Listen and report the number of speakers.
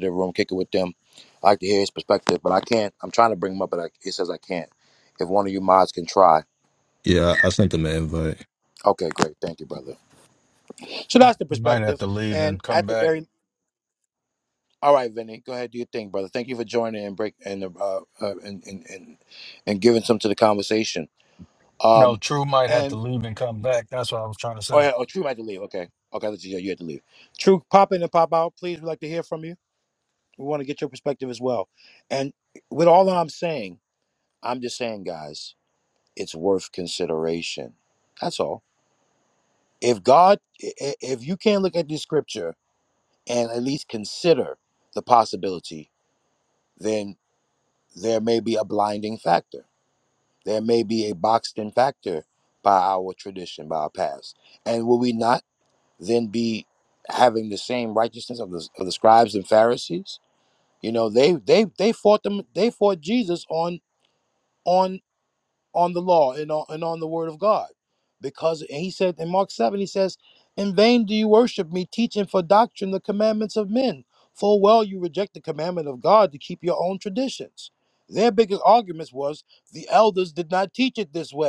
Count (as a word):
three